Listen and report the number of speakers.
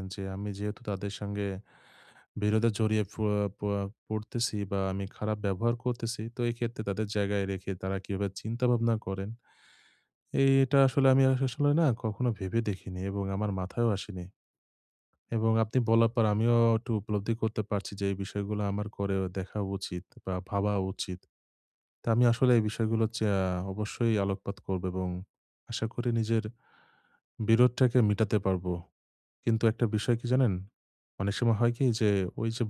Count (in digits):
1